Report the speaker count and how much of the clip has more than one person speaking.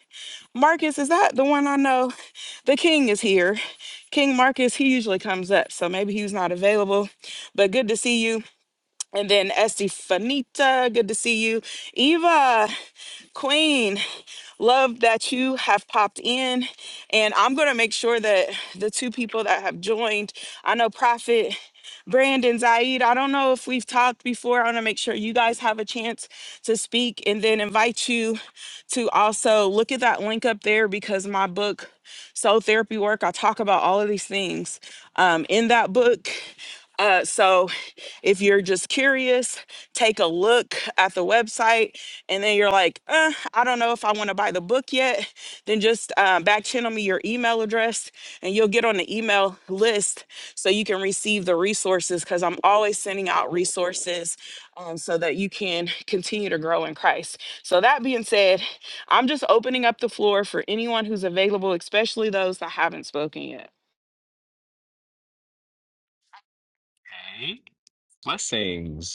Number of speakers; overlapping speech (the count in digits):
2, no overlap